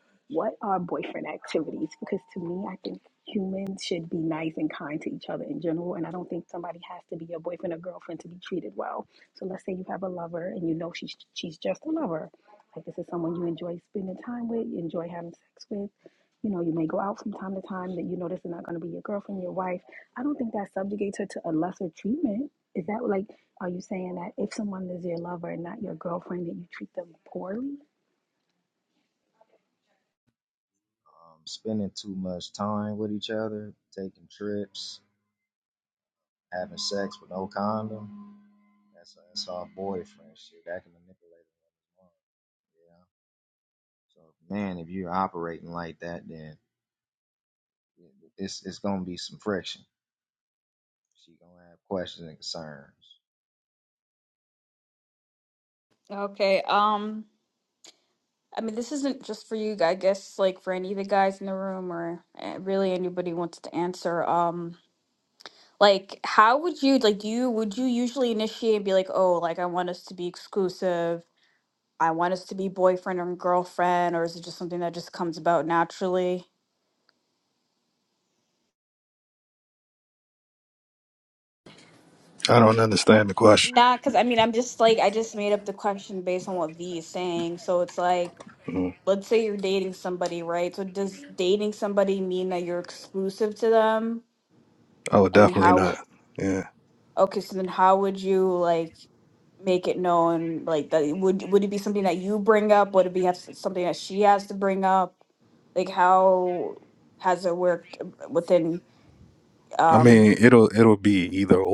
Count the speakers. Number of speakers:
4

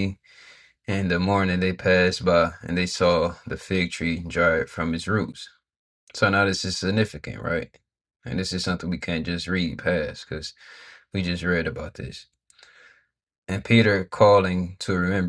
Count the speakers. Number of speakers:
1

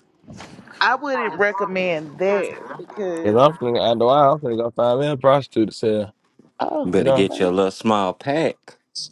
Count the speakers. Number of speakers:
3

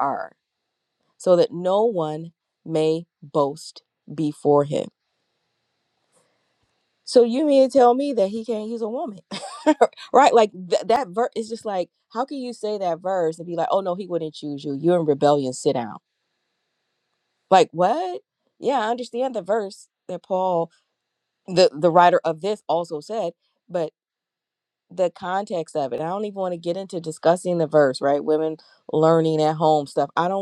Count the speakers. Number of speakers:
1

